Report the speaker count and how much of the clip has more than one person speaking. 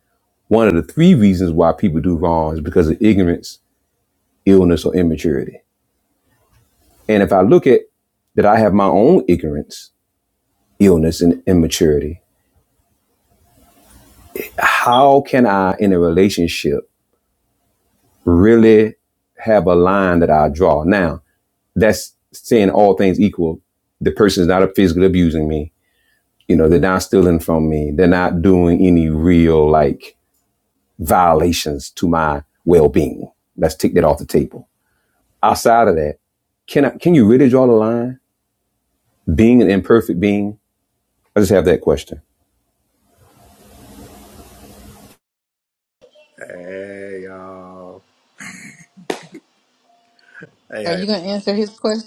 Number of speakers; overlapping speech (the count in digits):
3, under 1%